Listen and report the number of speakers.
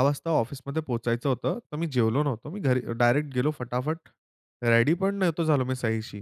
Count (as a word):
one